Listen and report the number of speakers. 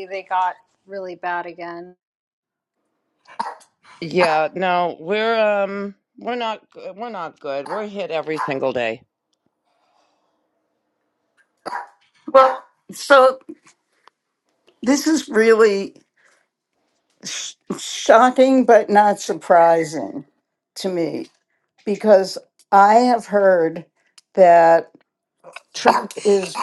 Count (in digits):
3